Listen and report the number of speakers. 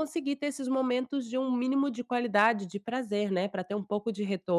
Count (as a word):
one